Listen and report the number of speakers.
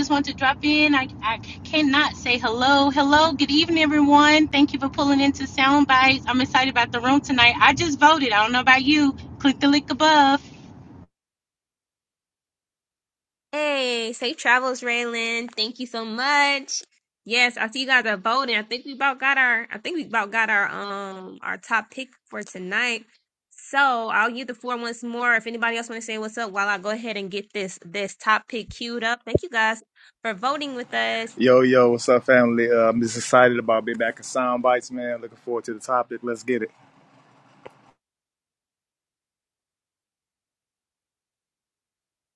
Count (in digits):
3